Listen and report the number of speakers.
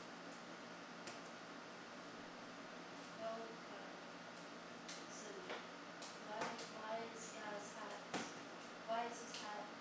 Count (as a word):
one